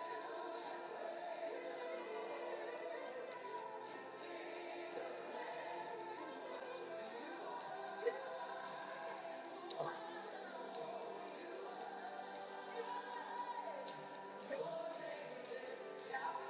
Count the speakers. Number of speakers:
0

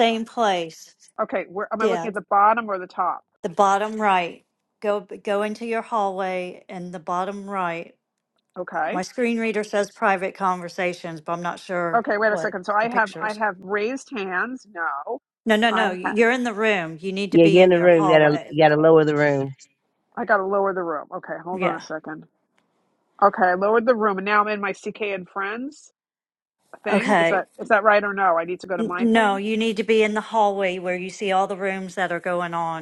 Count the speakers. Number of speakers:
3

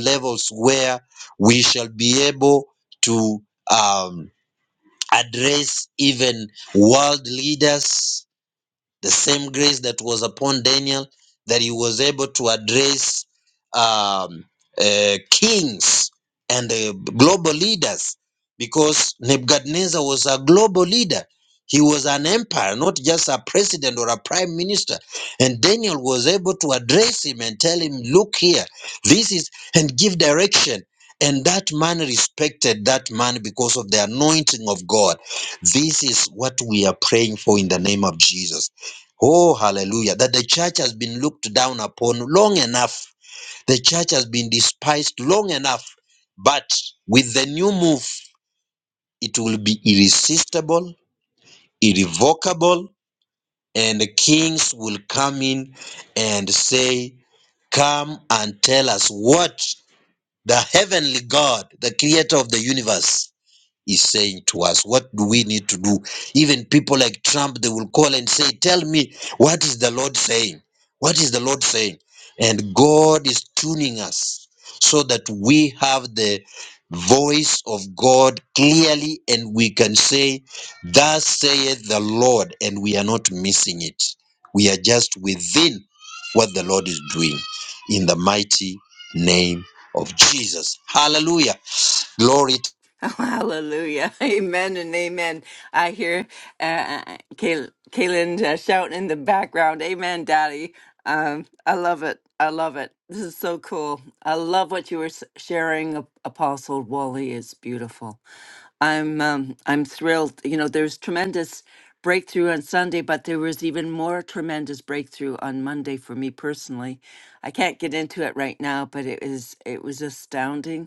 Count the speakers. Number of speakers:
2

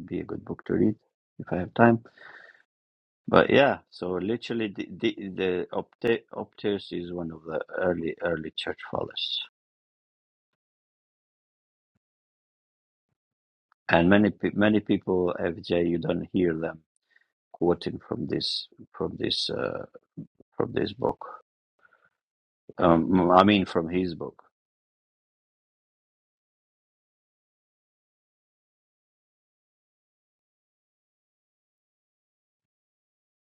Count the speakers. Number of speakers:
1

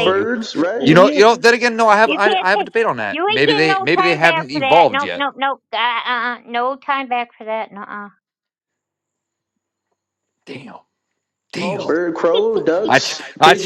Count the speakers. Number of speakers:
3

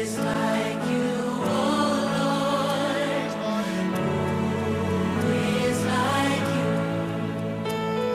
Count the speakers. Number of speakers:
0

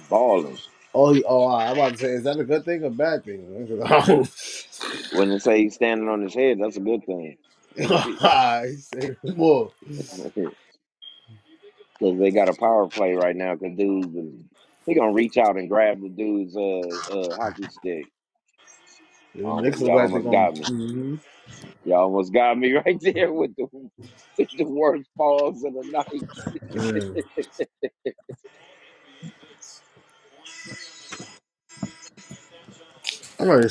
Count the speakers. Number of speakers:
2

